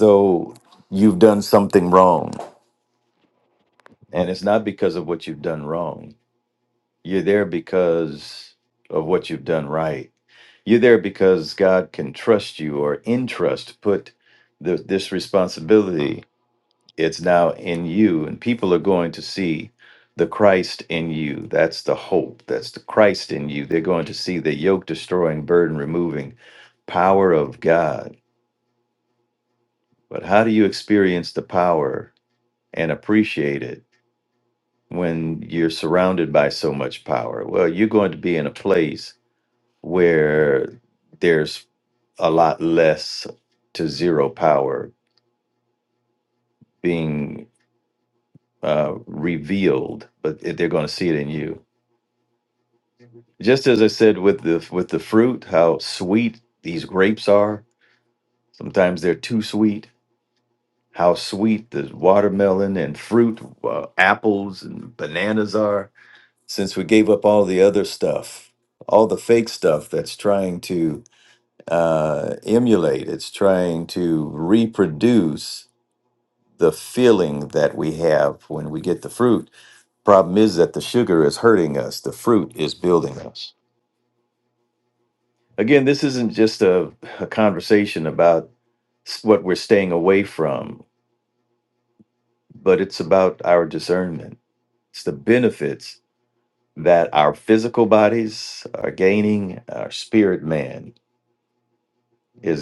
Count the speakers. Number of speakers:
1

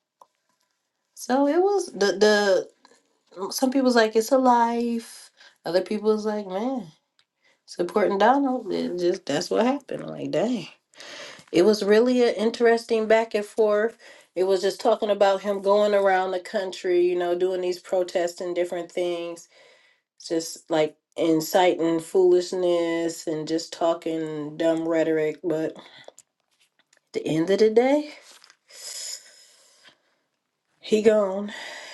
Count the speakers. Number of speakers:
1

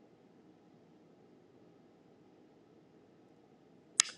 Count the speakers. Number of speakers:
0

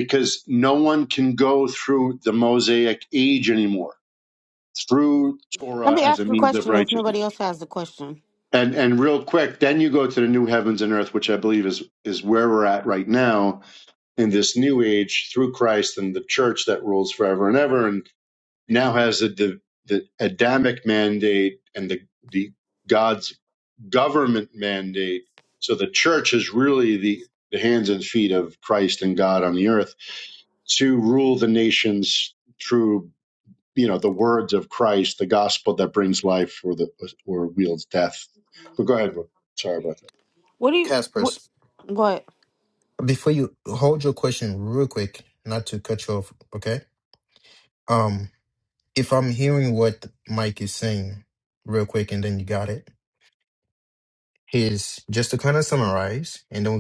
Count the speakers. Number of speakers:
3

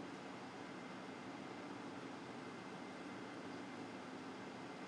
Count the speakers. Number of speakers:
0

